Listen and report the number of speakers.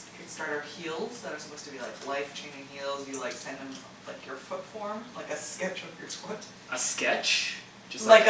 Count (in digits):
2